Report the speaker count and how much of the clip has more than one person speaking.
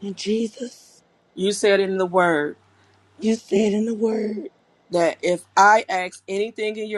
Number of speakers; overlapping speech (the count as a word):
two, no overlap